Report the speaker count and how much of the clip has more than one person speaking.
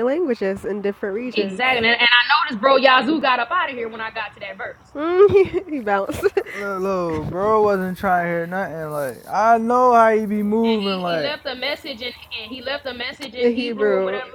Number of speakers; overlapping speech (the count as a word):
three, about 13%